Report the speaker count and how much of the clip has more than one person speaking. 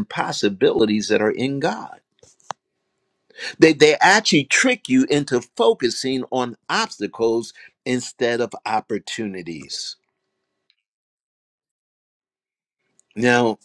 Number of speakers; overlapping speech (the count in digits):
1, no overlap